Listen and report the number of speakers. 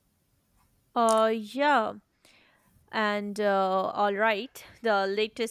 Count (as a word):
one